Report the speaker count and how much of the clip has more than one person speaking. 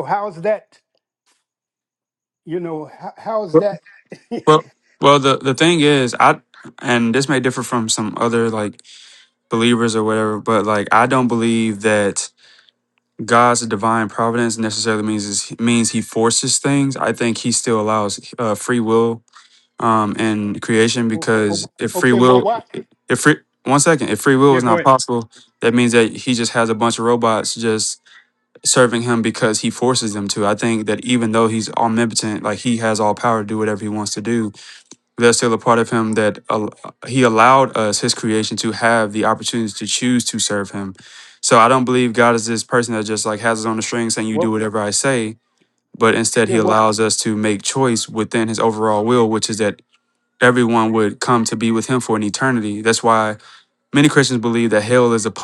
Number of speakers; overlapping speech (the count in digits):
2, about 4%